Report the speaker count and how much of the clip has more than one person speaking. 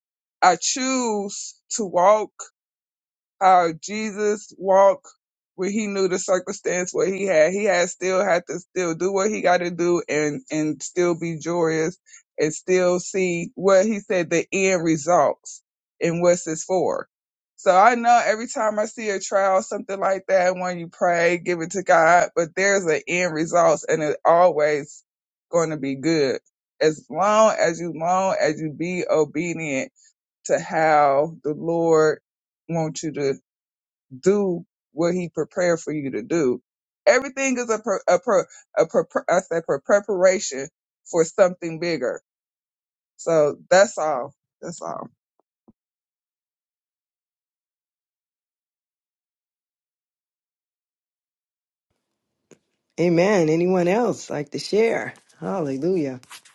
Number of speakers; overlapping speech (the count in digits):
2, no overlap